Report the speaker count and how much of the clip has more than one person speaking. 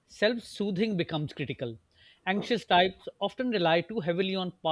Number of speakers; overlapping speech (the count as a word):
one, no overlap